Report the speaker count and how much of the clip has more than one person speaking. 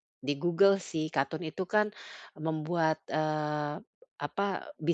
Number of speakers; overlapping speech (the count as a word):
one, no overlap